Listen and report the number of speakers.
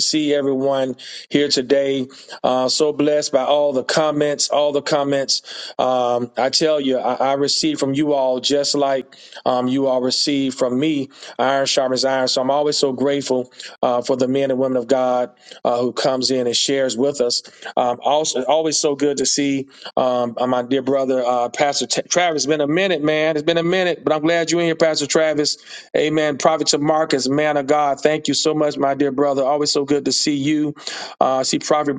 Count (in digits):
1